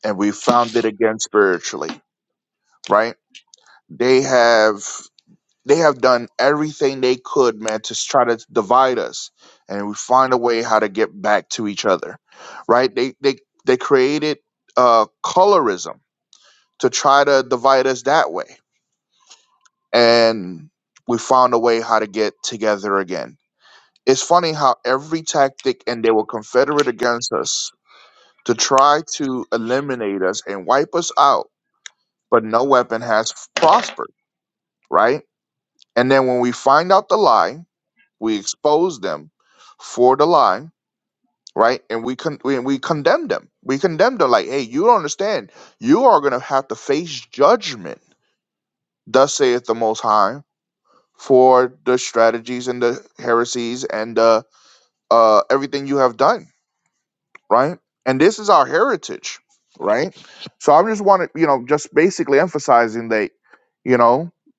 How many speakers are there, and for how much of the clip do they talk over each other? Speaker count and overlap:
1, no overlap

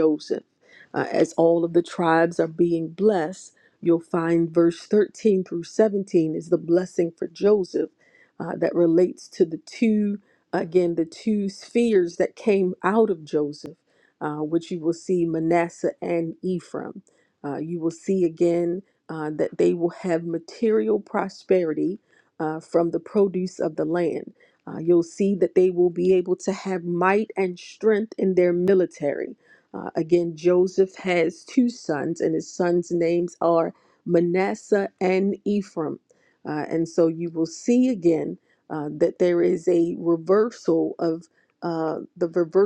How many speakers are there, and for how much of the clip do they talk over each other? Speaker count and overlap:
1, no overlap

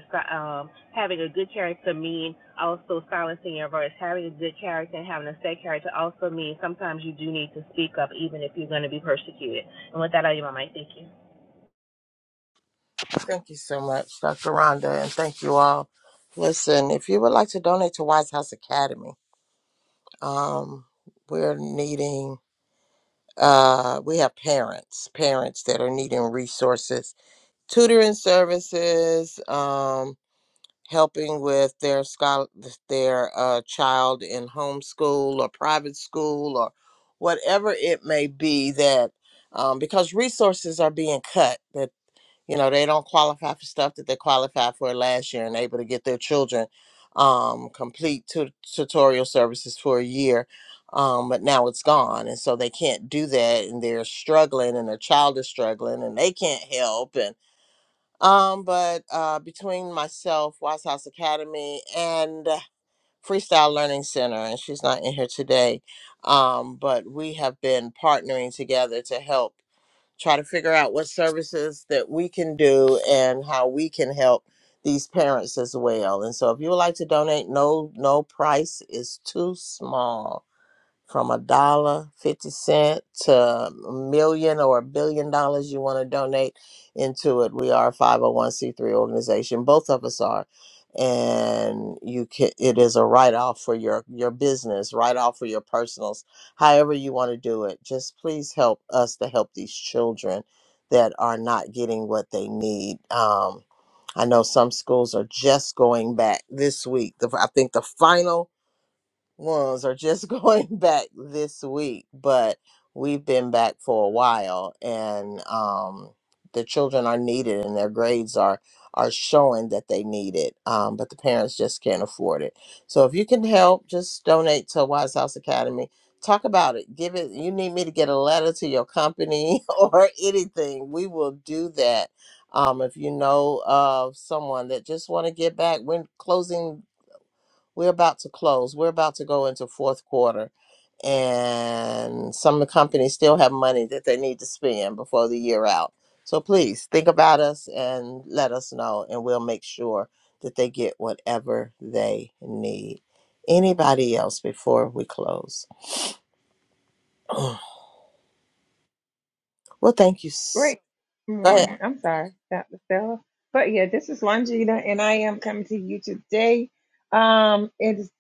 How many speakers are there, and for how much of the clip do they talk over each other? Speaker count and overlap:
3, under 1%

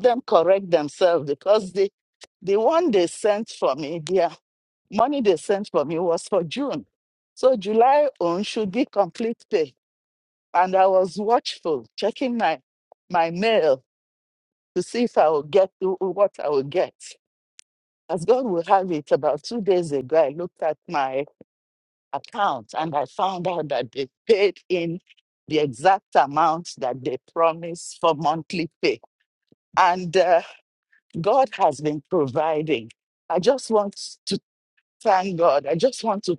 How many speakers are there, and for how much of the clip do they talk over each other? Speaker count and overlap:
1, no overlap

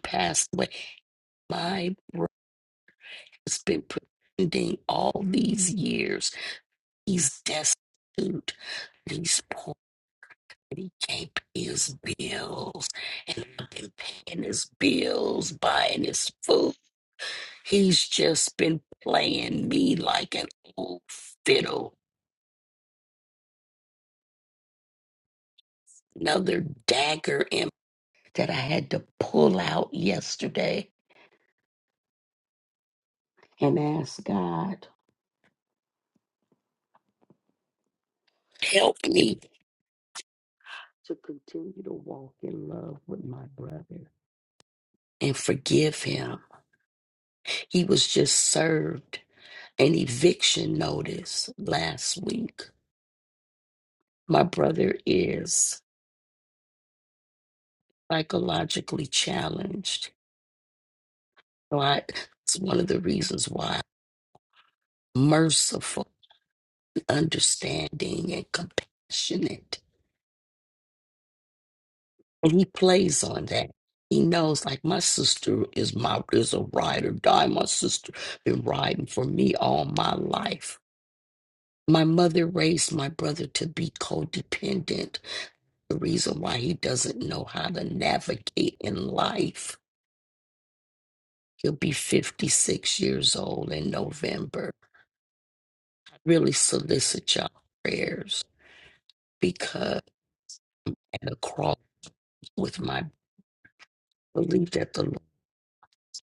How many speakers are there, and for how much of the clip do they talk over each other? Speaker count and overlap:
1, no overlap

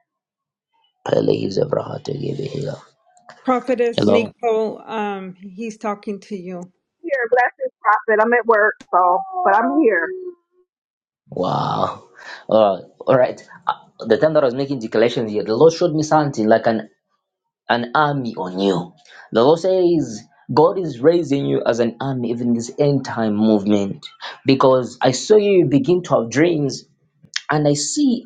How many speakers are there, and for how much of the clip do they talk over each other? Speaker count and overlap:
3, about 1%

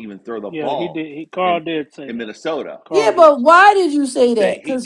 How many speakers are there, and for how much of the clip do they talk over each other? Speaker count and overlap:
3, about 42%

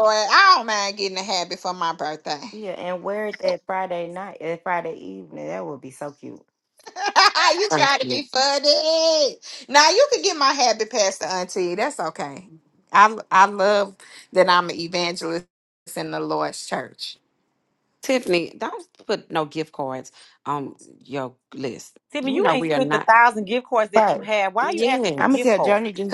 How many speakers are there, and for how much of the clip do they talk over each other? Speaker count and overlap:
4, about 9%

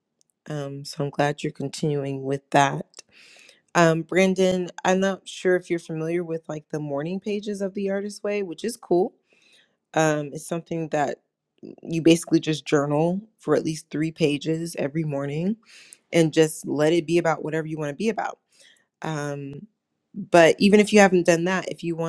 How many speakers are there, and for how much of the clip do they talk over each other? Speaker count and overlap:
1, no overlap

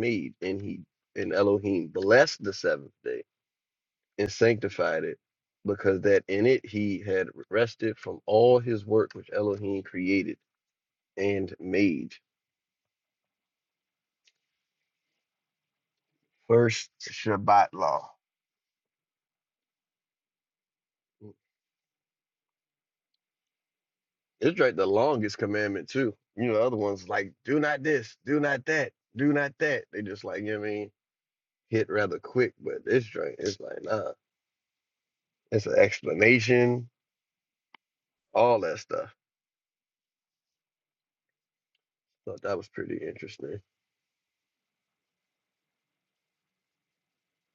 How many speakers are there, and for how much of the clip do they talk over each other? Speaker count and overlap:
1, no overlap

